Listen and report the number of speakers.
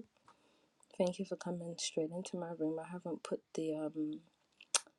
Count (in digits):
1